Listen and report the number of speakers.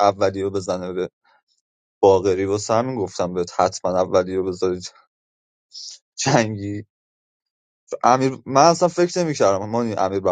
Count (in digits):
1